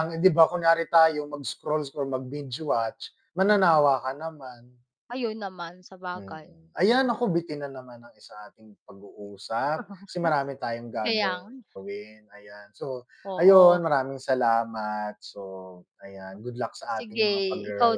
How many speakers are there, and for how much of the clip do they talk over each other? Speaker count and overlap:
two, about 10%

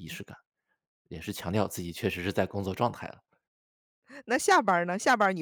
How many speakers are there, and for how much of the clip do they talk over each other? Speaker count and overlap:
two, no overlap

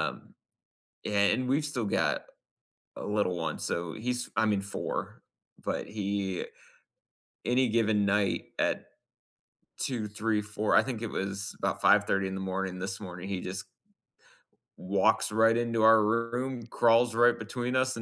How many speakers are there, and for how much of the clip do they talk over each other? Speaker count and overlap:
one, no overlap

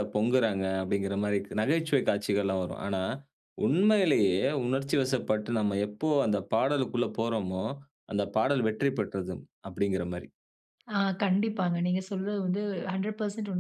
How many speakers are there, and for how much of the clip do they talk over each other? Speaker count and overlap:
two, no overlap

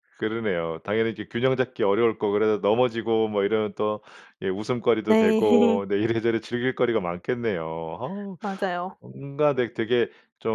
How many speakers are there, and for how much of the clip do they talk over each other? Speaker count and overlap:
two, about 7%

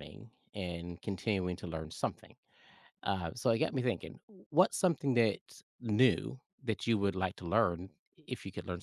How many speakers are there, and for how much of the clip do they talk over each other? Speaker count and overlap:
one, no overlap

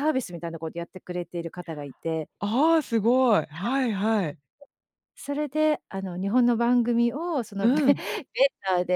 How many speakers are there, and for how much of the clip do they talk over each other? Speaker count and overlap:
two, about 5%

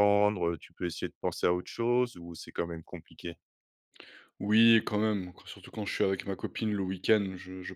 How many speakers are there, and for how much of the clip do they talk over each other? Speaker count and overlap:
two, no overlap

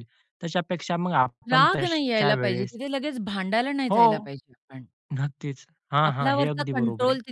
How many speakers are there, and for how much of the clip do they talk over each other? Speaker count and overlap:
two, about 34%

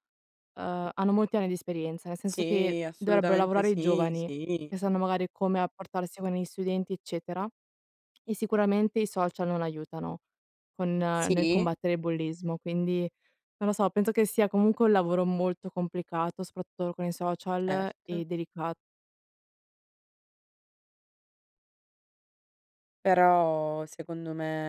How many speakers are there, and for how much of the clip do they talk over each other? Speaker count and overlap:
two, about 12%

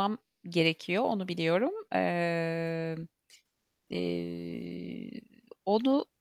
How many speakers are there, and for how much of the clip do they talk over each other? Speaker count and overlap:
one, no overlap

